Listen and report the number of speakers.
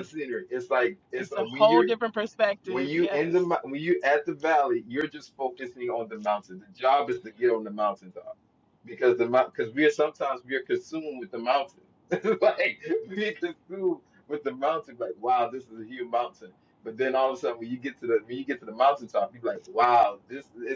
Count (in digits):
2